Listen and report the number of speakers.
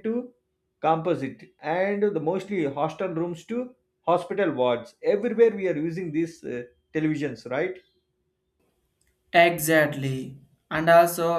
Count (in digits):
2